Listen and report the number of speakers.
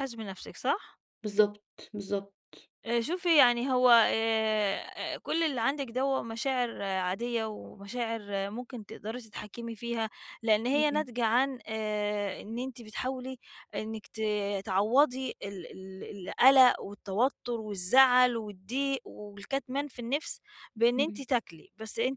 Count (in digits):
2